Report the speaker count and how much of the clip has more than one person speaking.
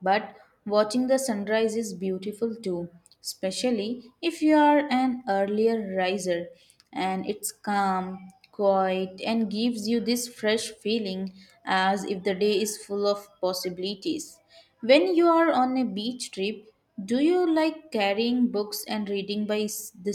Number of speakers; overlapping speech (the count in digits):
1, no overlap